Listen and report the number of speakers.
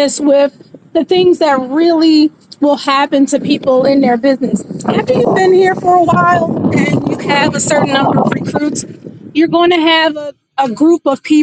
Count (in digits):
1